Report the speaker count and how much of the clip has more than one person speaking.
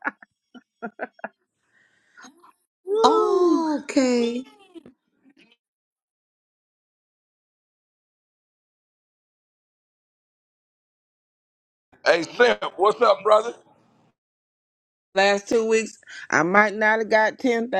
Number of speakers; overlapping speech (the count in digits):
3, about 4%